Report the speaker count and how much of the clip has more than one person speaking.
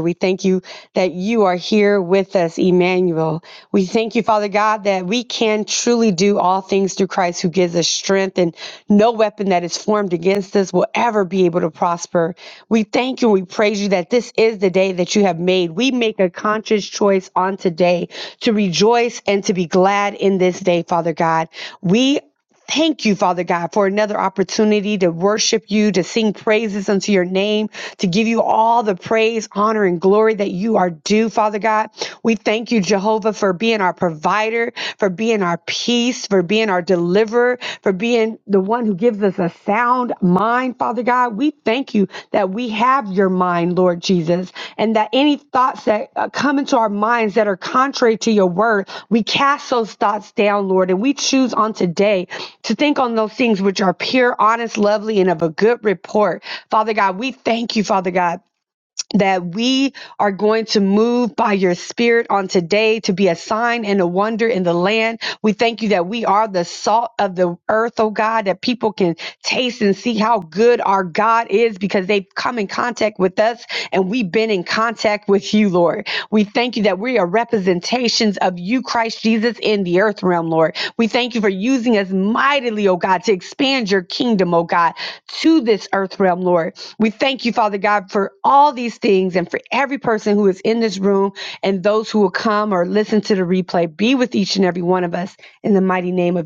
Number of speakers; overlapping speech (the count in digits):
1, no overlap